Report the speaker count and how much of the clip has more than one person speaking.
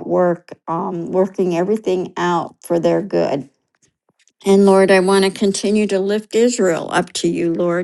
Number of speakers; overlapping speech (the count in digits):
1, no overlap